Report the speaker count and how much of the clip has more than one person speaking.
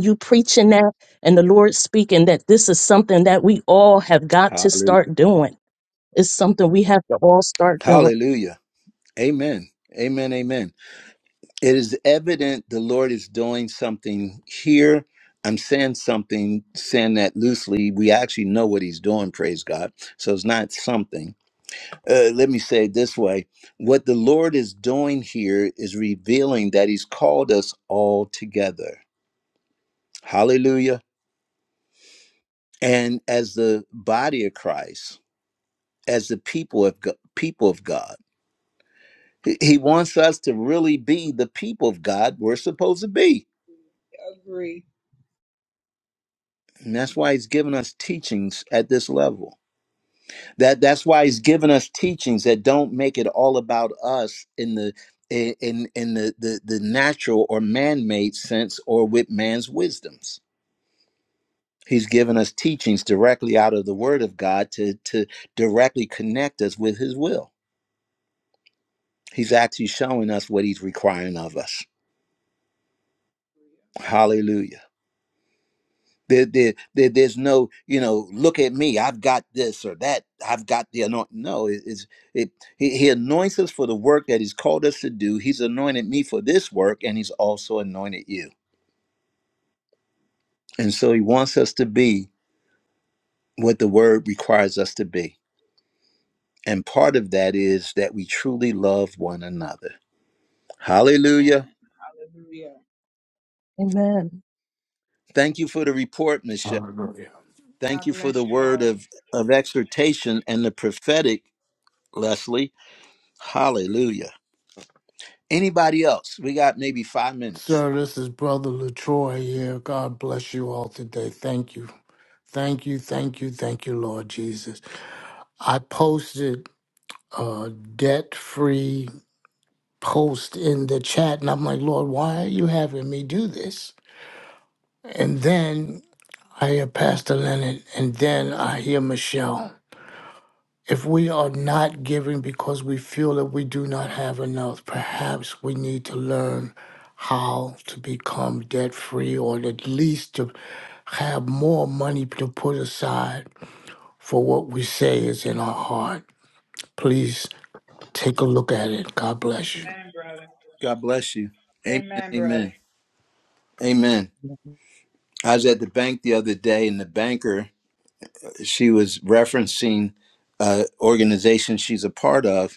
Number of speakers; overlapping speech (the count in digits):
4, about 2%